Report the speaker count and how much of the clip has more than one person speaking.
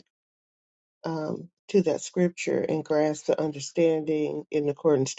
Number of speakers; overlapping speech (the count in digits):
1, no overlap